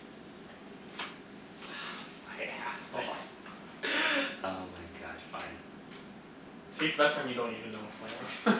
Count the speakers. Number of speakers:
two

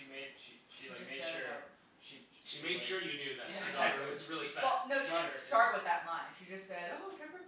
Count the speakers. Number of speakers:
three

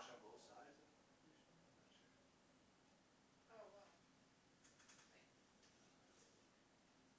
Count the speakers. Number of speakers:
two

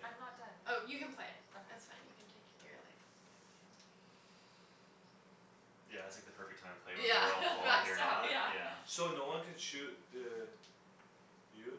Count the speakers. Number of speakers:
four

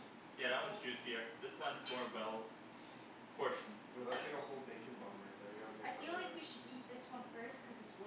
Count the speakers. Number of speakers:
three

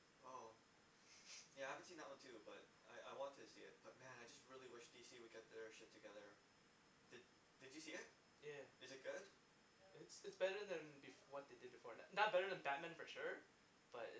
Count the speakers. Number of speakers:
two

